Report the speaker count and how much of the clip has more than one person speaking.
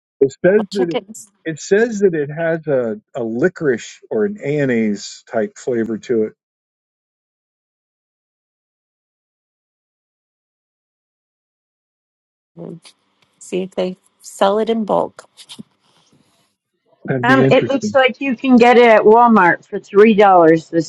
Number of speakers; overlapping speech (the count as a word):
three, about 5%